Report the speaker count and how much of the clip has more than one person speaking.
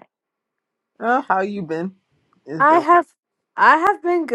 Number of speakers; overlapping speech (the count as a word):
two, about 6%